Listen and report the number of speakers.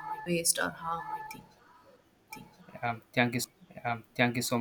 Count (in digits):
2